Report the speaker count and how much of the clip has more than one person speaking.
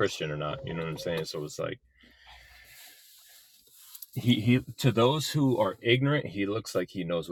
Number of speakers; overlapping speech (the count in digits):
1, no overlap